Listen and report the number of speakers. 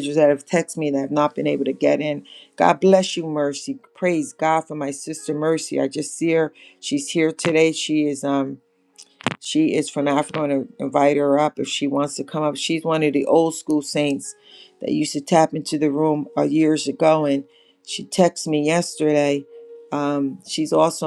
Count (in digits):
1